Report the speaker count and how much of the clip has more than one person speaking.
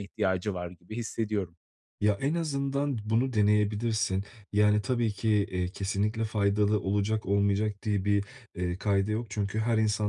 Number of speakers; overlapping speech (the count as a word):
two, no overlap